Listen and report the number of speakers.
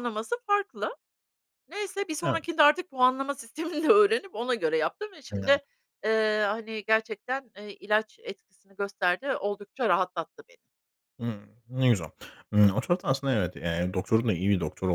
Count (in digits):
2